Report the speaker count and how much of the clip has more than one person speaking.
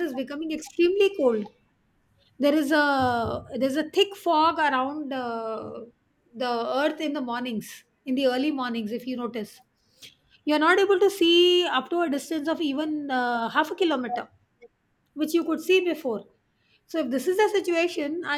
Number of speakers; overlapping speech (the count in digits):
1, no overlap